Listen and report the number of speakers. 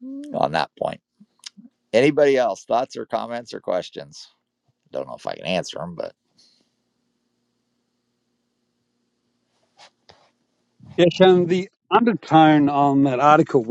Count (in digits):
2